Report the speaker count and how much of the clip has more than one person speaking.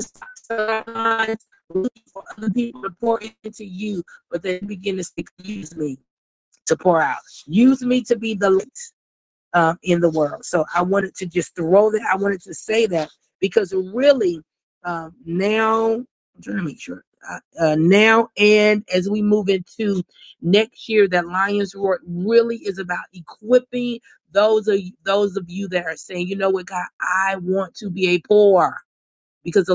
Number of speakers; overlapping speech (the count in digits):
1, no overlap